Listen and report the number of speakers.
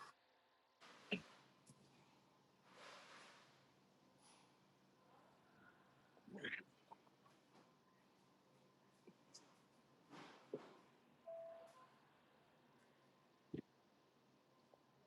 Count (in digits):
0